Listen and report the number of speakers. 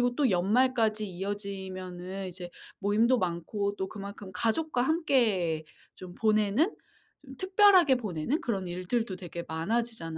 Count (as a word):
one